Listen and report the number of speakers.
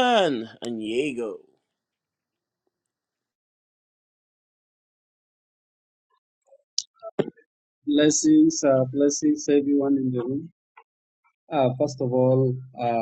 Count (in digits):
2